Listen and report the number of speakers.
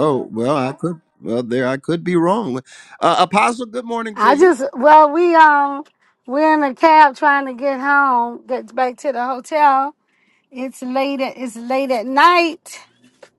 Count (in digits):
2